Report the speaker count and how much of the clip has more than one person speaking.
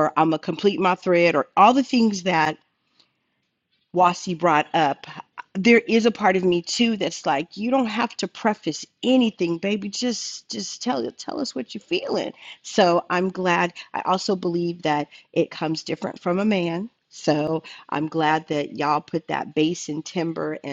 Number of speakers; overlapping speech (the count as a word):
one, no overlap